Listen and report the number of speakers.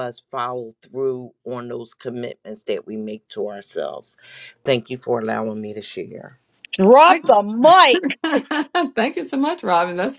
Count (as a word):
three